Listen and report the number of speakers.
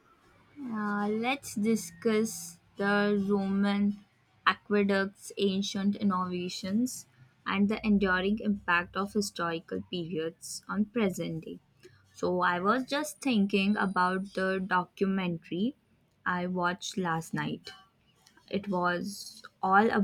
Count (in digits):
1